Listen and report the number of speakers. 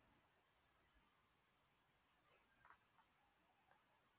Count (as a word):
zero